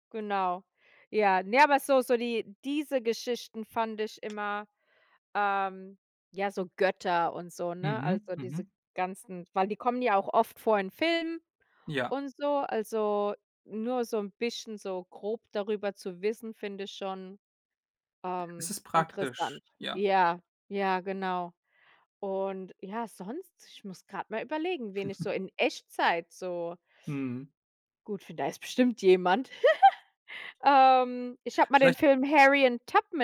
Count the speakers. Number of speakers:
two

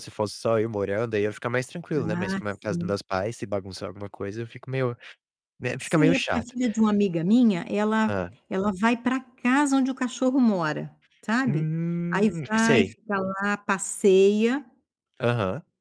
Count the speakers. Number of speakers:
two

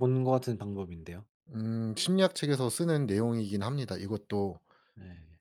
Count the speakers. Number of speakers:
two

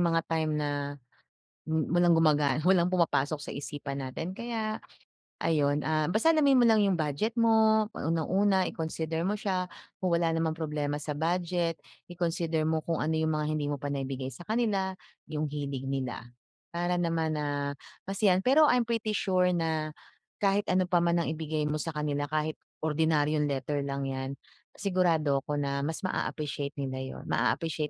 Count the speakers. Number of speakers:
one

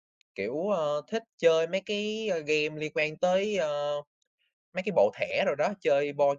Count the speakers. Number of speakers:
one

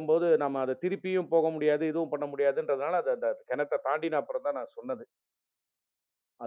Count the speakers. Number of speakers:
one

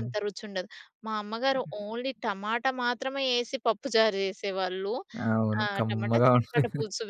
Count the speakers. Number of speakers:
two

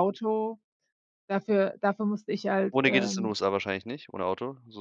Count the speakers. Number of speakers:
two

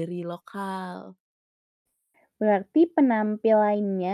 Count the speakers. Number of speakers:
two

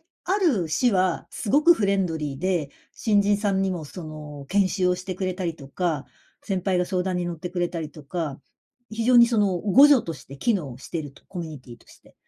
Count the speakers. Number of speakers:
one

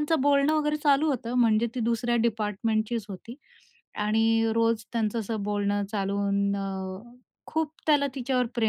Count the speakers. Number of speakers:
one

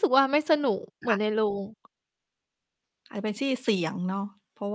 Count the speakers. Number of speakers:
two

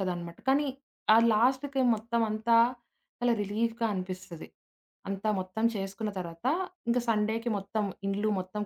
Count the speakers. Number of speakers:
one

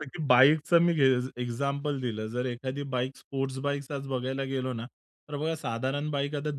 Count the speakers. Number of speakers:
one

